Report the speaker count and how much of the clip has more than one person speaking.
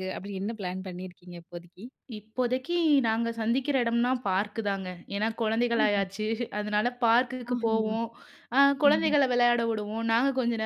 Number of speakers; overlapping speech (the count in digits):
2, about 3%